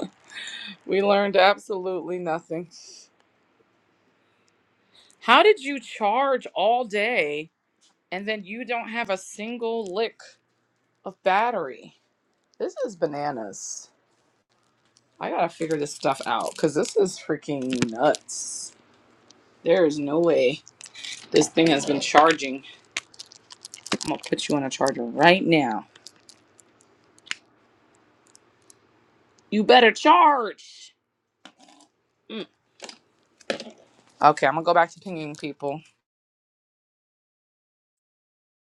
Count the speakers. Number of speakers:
one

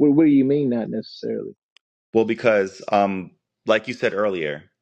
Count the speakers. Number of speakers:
two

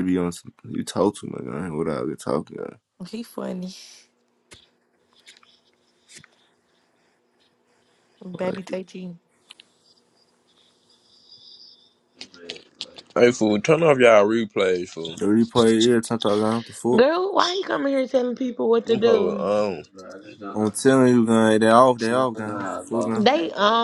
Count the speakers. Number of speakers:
four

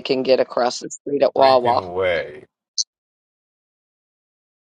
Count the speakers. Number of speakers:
two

